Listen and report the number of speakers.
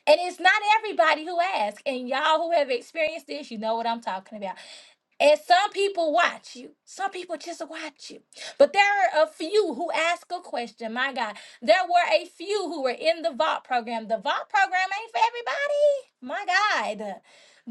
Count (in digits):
1